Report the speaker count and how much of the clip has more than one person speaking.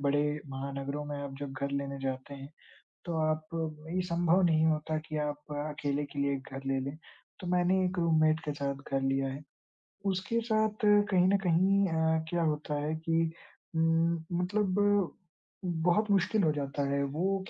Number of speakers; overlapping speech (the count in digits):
1, no overlap